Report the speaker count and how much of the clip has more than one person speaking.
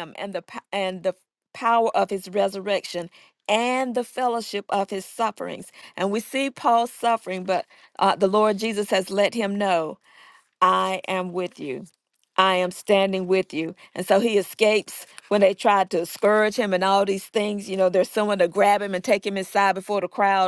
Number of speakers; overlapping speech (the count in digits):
1, no overlap